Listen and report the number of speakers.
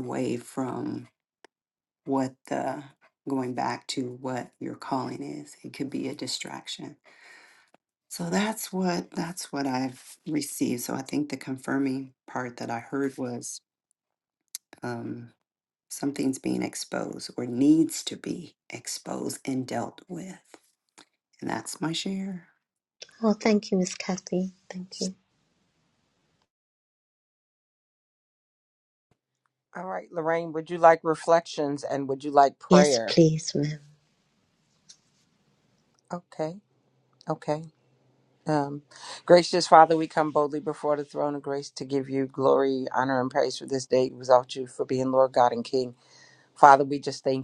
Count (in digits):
3